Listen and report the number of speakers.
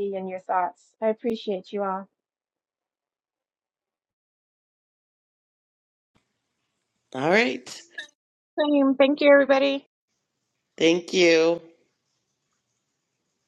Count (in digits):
3